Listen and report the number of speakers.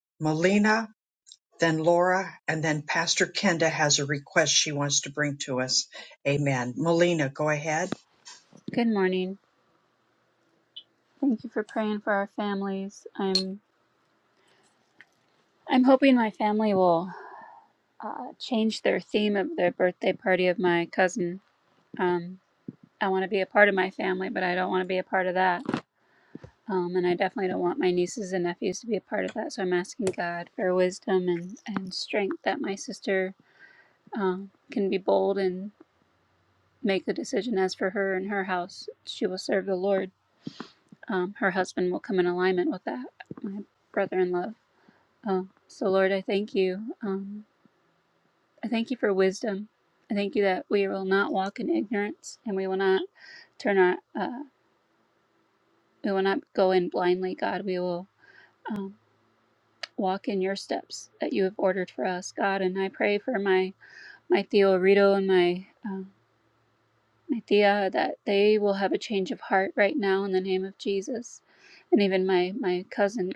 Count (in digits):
2